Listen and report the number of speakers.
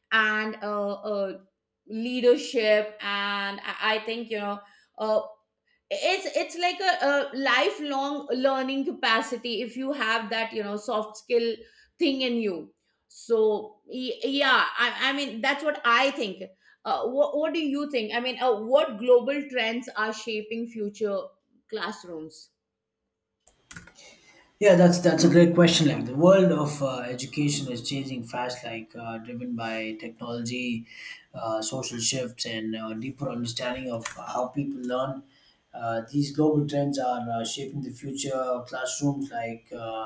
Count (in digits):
2